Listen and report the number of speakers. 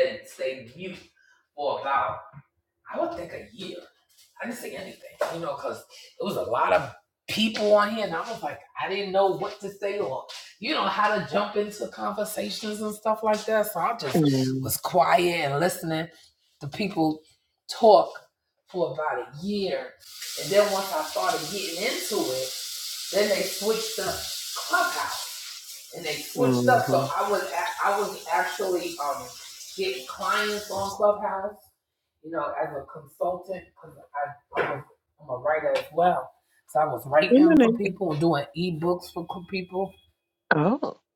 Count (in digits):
2